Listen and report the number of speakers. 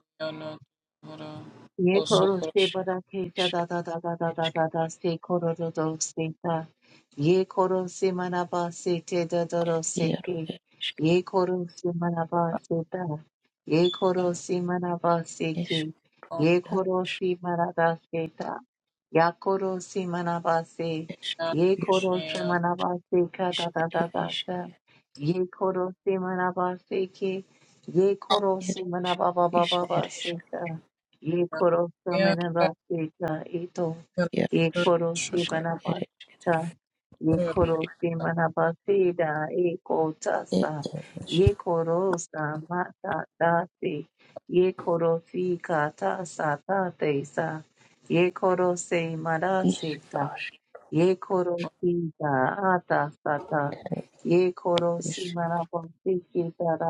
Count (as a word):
three